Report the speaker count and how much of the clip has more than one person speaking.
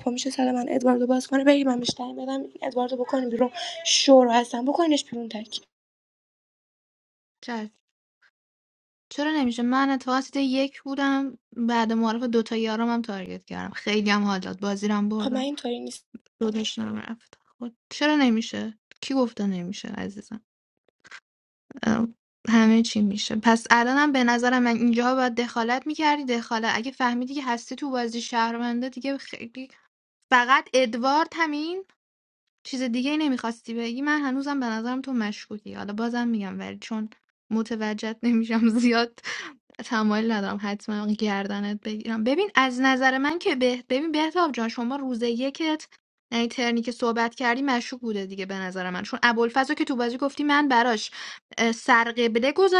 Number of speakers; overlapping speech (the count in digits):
2, under 1%